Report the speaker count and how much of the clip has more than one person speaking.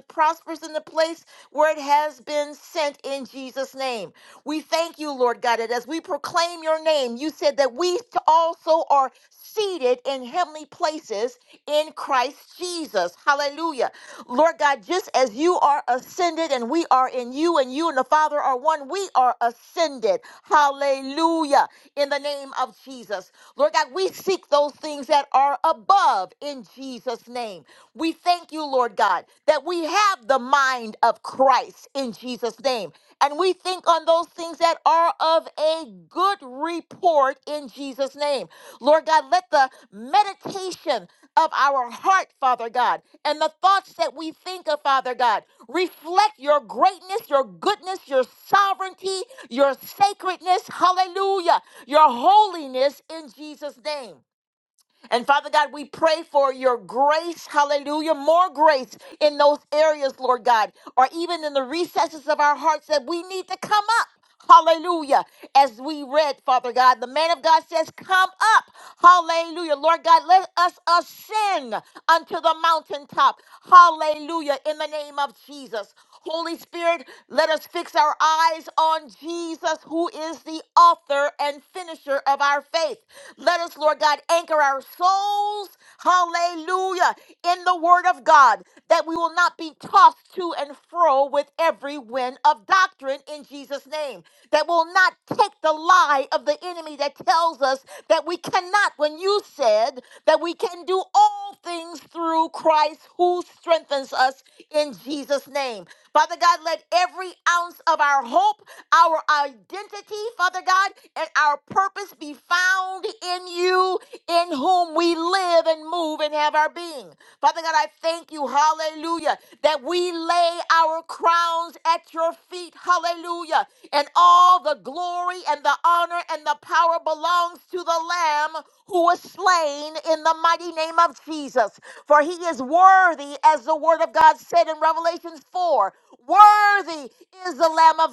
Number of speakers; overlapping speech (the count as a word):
one, no overlap